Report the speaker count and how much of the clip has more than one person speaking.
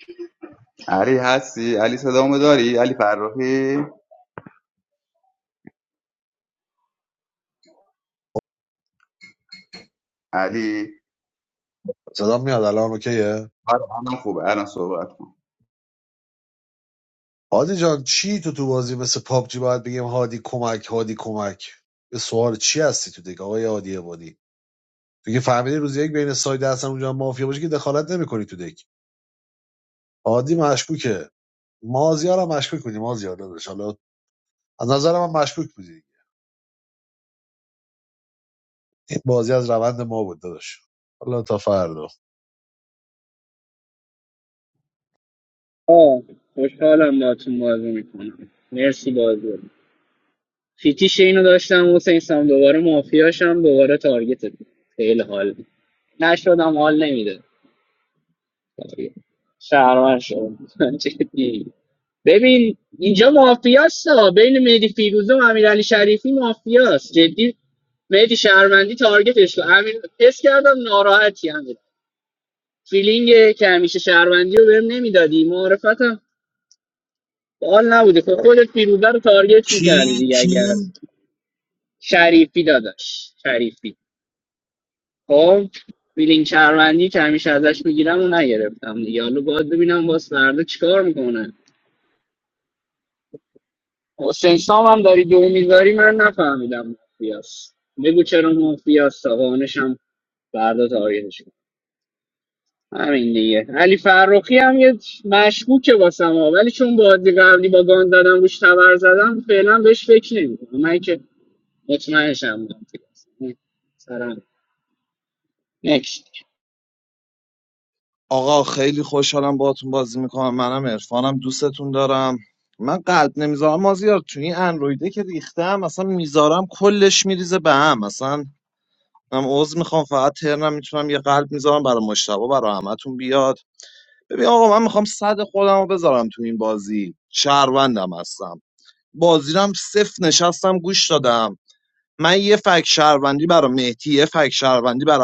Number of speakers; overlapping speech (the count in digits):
4, about 1%